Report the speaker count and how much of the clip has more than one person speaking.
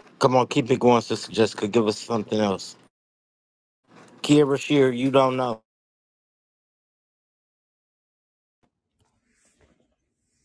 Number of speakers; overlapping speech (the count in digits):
1, no overlap